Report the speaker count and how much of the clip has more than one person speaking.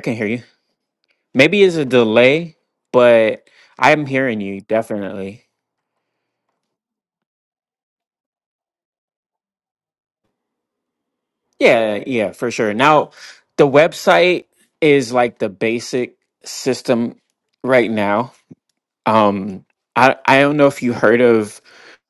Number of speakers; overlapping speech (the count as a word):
one, no overlap